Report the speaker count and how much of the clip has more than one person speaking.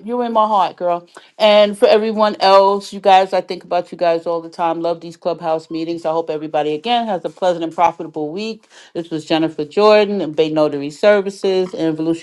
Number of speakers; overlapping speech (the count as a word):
one, no overlap